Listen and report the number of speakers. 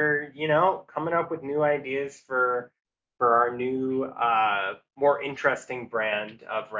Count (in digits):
1